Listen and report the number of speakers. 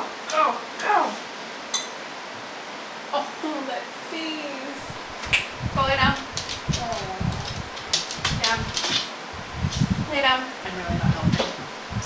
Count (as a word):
two